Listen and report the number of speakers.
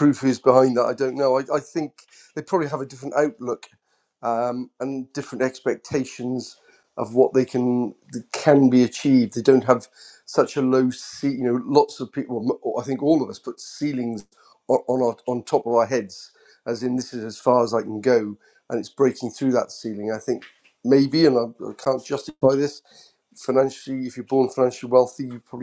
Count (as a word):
one